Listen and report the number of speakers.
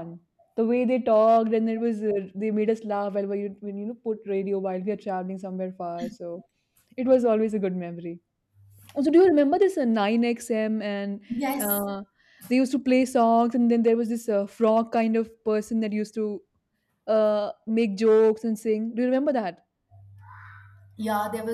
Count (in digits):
2